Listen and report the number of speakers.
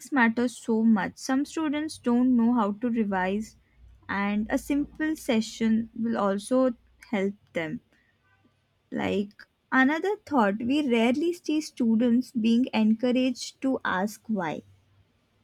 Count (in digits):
1